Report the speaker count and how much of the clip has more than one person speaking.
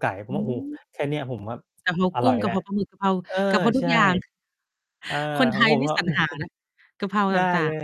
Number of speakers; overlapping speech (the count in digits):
2, about 25%